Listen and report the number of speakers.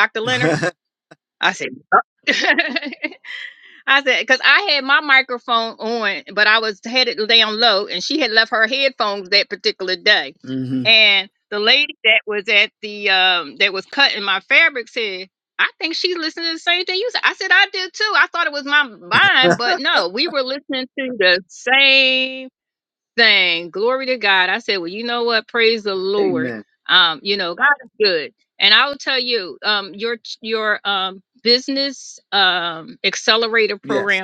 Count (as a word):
two